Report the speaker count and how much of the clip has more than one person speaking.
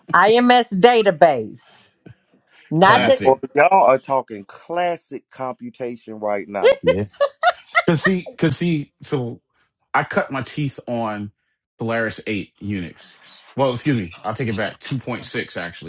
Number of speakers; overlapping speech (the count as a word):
three, about 3%